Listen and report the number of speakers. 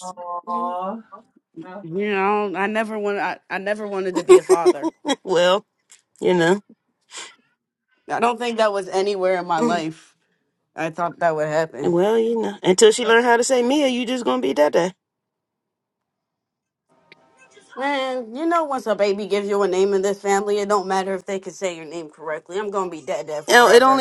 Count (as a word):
three